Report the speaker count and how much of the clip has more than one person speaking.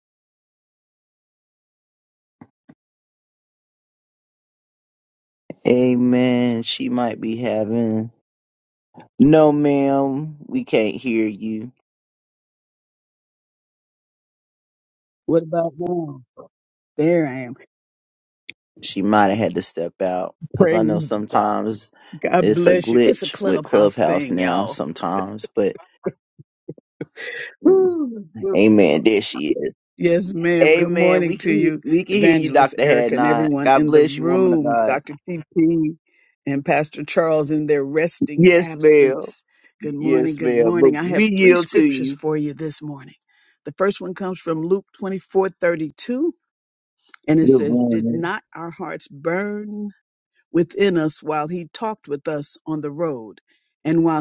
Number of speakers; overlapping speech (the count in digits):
2, about 22%